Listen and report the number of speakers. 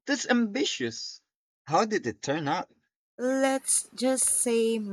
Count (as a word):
two